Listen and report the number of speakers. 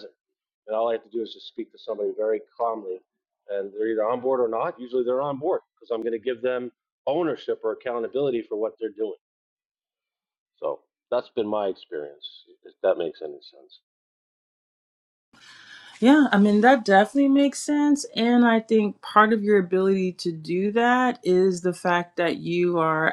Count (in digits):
2